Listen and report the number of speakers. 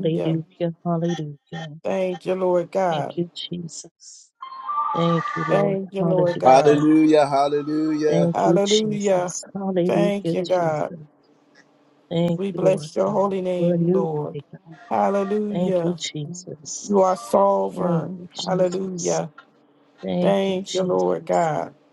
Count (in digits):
3